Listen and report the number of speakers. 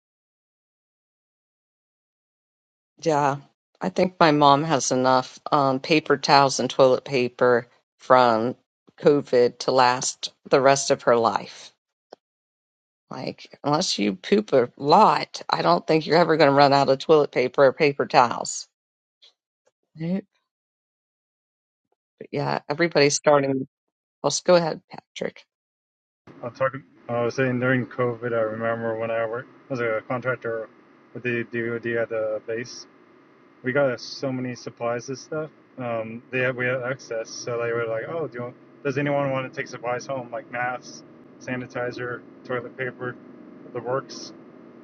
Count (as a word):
two